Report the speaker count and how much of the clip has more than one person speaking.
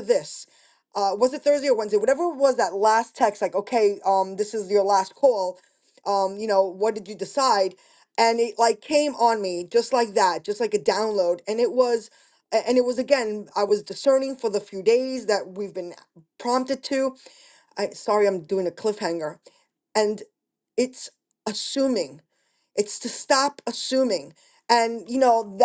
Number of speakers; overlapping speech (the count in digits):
1, no overlap